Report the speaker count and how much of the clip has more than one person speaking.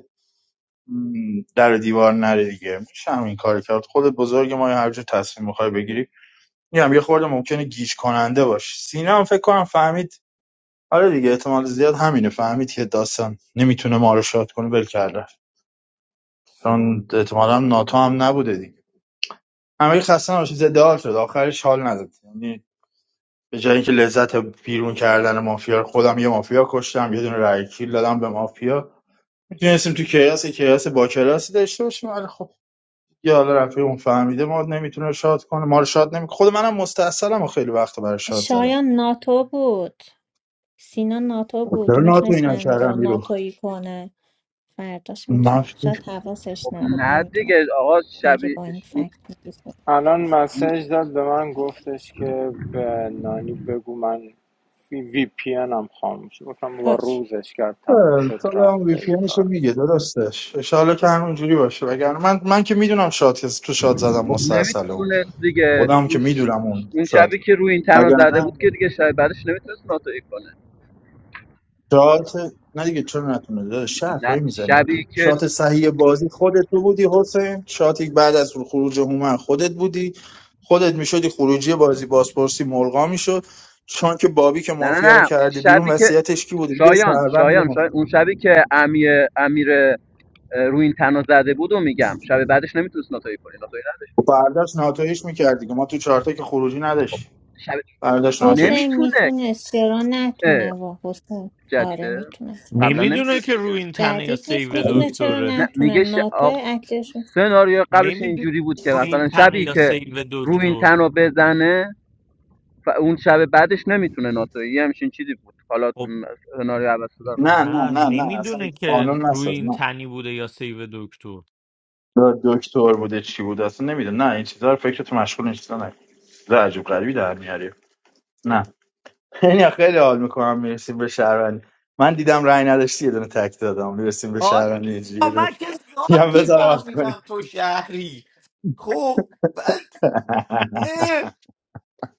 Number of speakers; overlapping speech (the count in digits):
5, about 15%